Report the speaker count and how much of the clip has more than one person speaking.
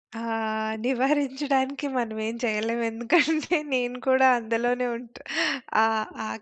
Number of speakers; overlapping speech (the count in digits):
1, no overlap